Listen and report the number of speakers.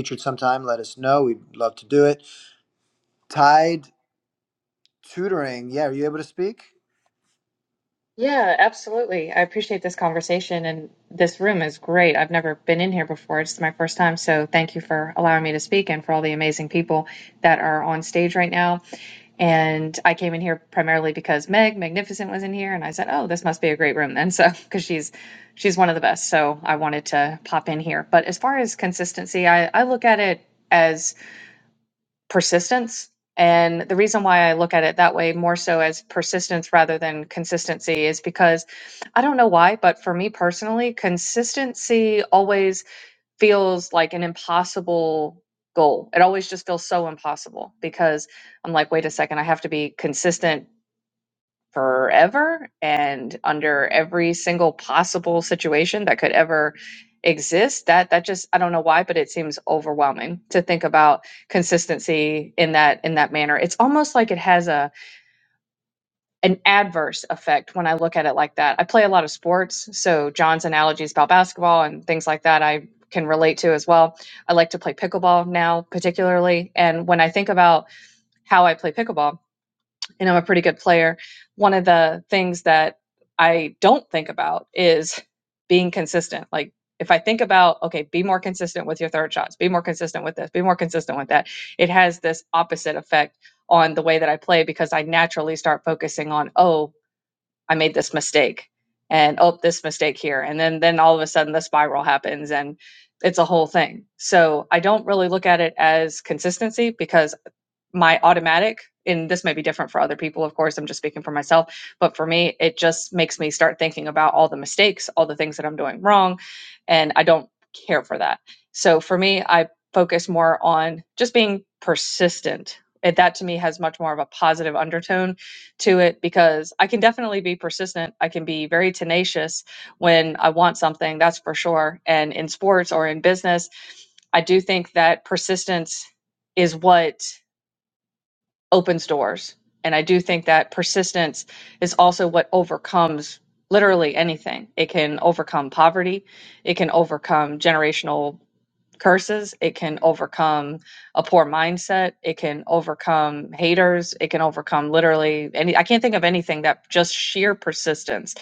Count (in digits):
2